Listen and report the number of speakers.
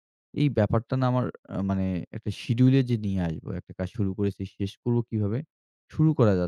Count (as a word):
one